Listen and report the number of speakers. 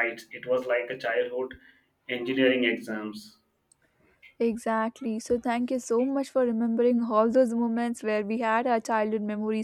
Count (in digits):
2